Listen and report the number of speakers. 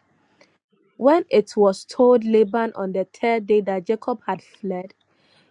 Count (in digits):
1